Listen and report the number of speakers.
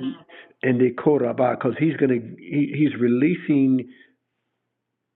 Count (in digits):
1